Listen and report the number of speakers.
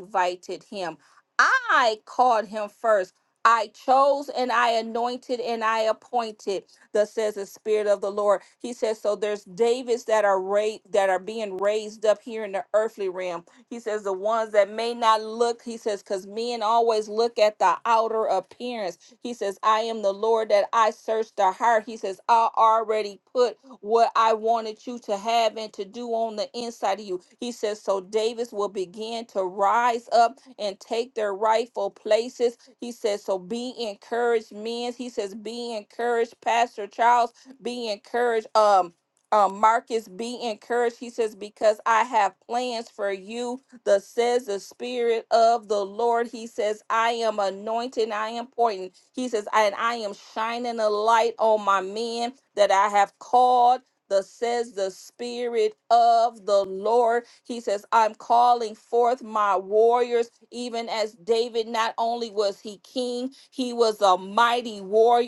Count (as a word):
one